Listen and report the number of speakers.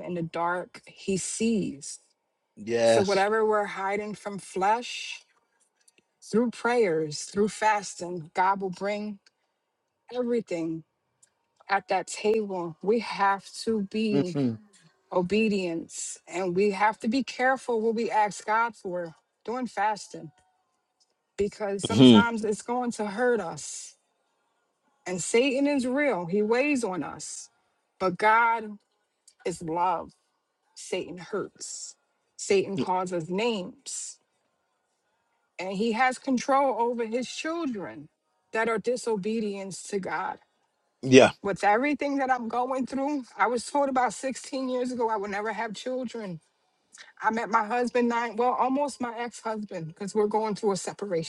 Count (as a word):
two